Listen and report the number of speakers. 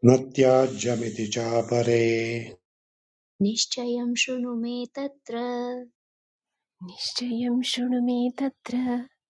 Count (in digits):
3